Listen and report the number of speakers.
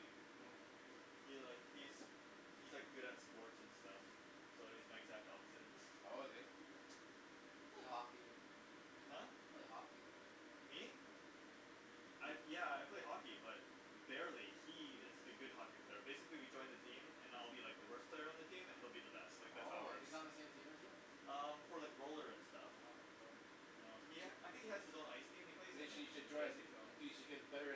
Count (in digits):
3